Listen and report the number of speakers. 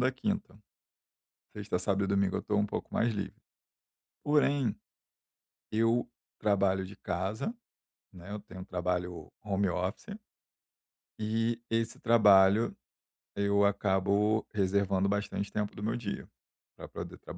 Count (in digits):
1